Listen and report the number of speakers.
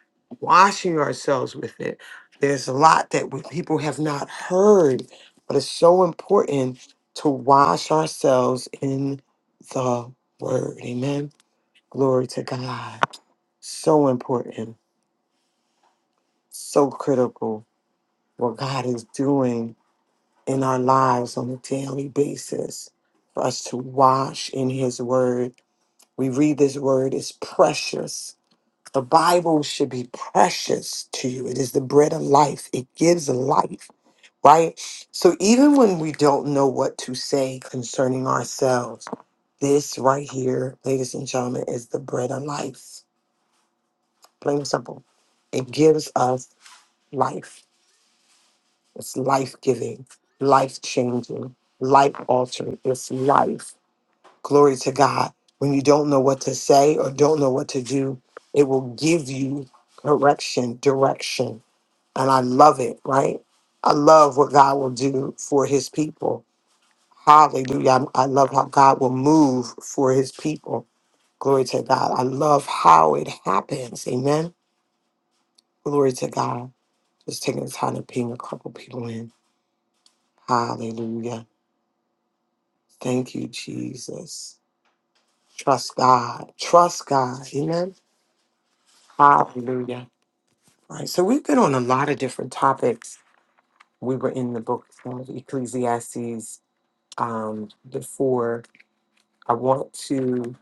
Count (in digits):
1